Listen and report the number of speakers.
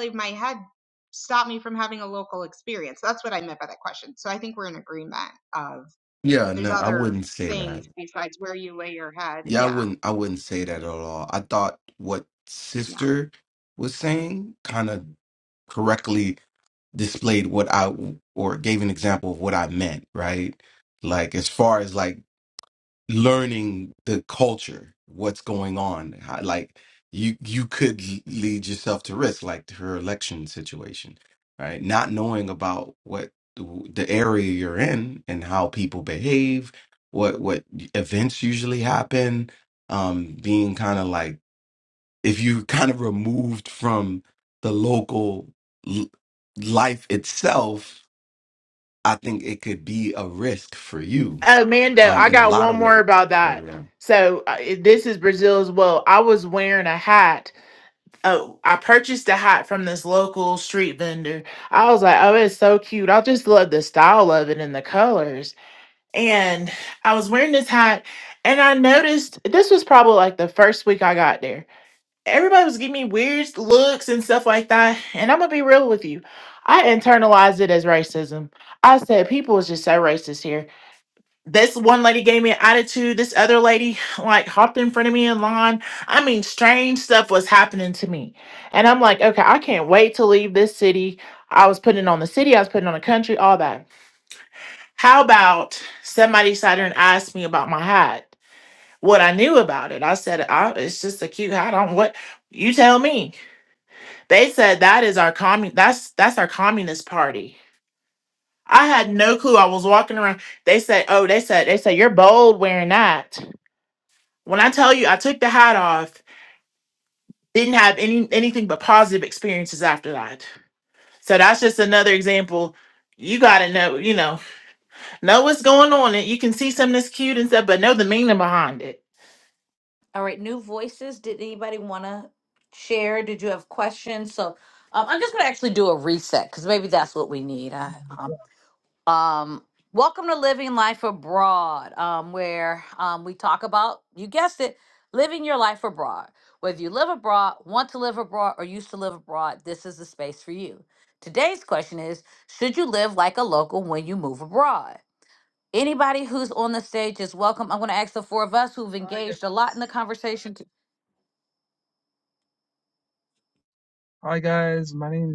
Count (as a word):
five